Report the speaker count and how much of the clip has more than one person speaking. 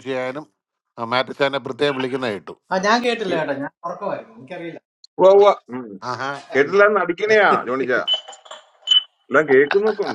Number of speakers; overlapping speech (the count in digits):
3, about 1%